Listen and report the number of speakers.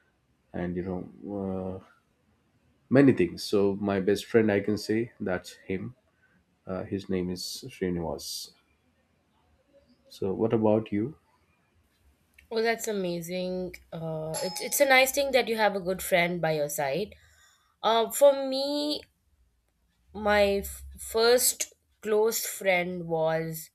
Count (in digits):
2